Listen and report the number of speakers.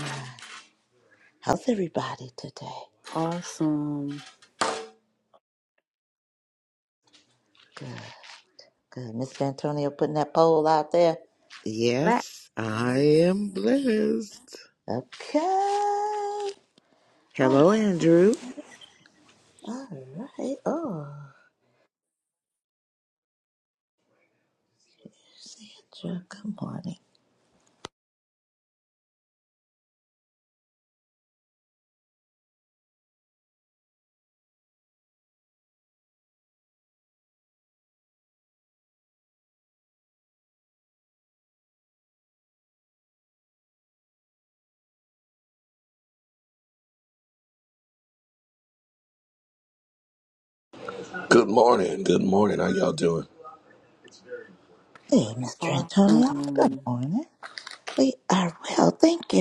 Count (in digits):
4